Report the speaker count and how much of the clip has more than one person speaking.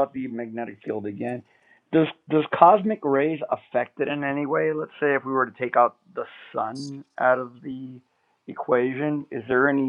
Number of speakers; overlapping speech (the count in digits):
1, no overlap